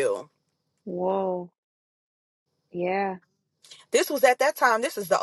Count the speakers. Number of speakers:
two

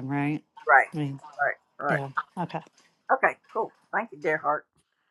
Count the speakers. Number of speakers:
two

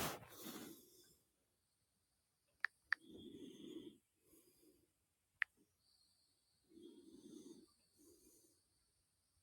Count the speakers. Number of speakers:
zero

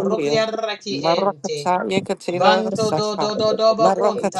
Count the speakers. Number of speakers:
two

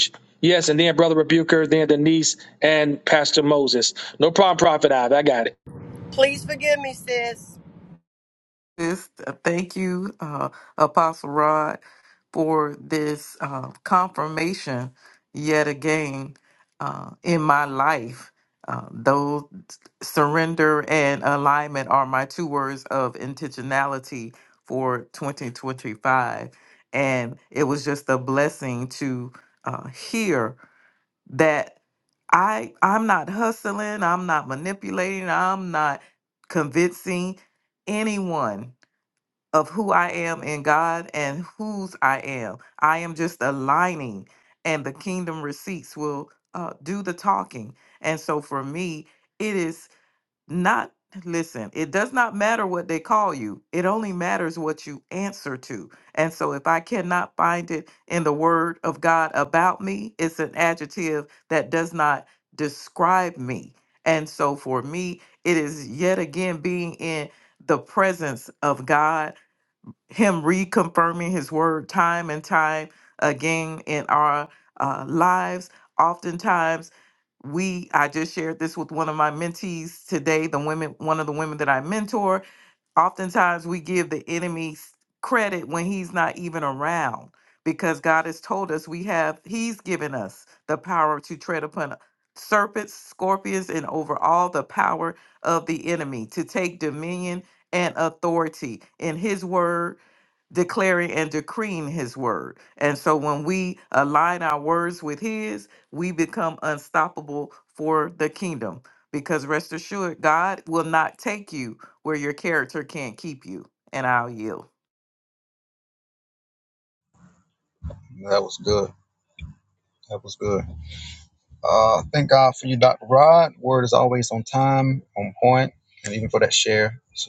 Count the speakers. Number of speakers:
four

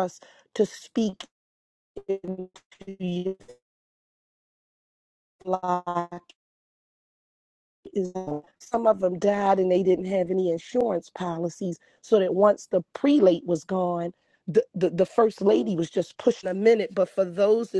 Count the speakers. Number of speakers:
one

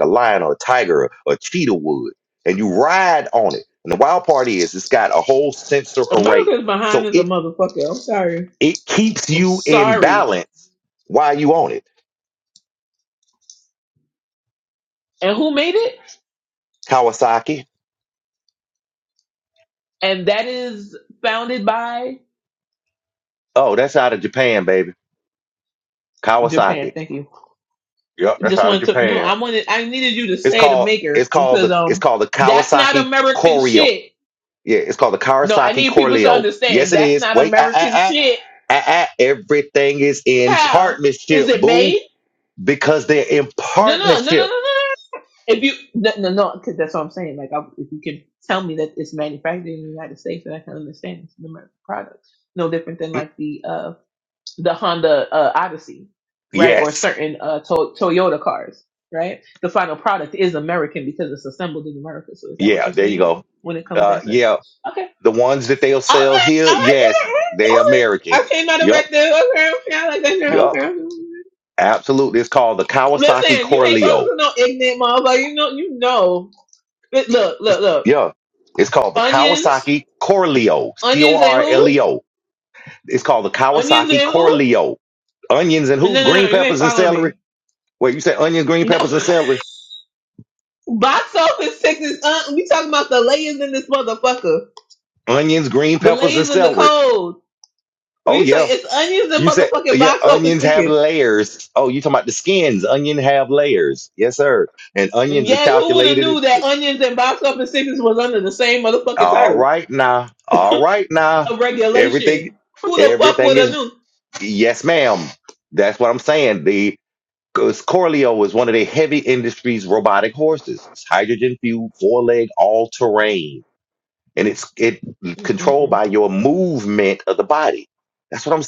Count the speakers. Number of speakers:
two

